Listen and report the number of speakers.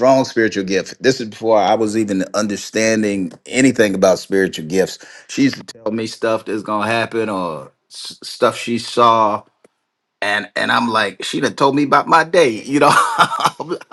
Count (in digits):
1